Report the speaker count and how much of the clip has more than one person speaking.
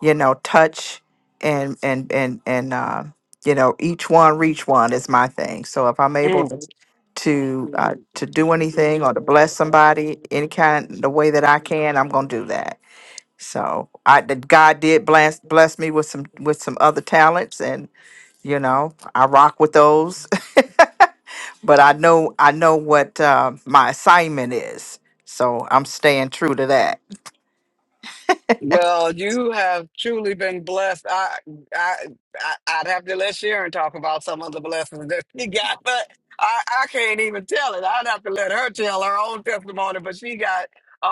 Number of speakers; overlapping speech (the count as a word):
two, about 1%